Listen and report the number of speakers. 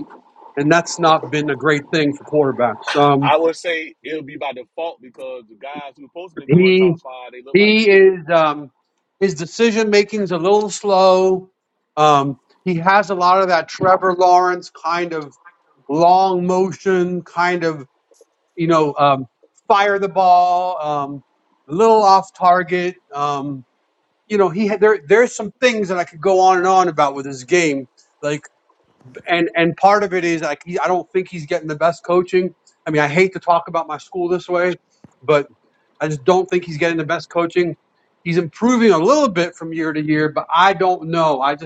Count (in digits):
2